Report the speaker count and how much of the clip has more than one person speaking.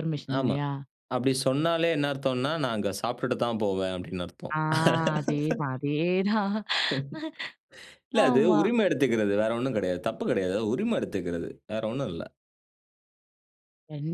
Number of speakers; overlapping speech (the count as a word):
two, about 5%